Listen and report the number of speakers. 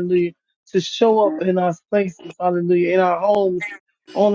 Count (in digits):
1